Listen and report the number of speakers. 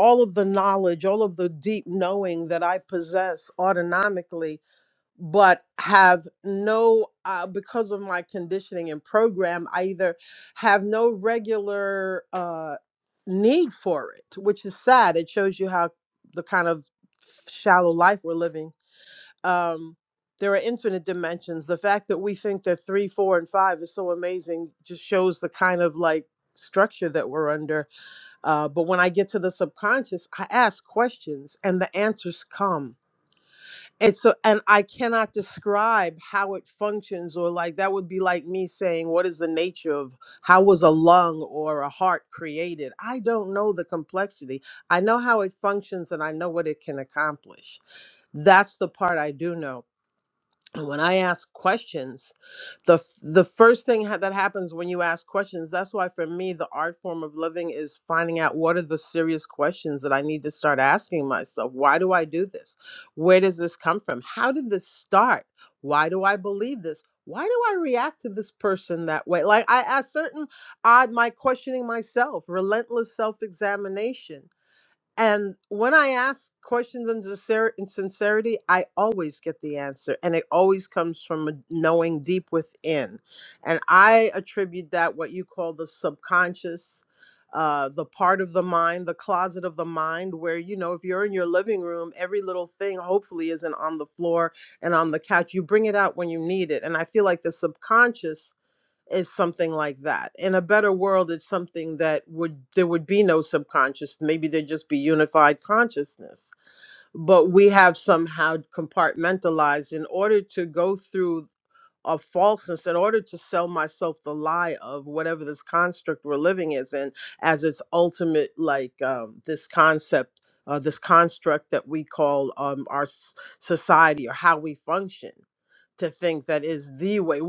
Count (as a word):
one